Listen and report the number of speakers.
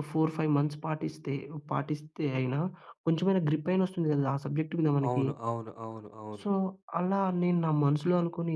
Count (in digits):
2